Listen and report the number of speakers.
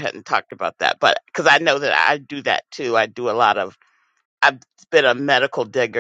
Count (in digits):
1